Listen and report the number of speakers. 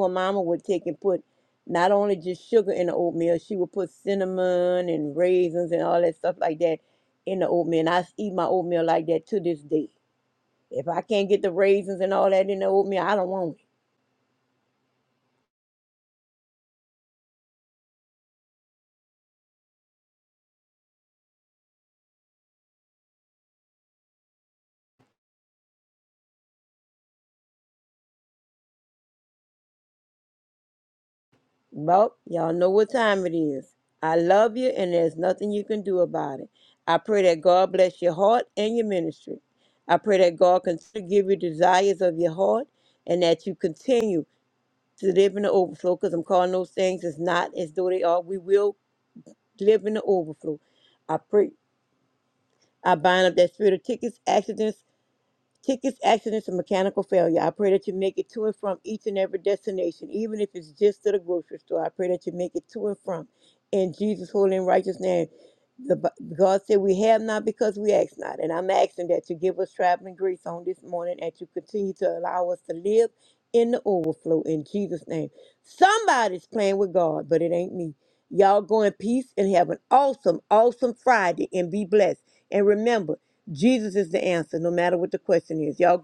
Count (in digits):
1